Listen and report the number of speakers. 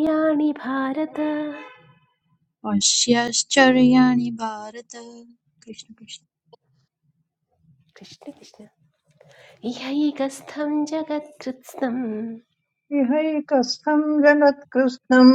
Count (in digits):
3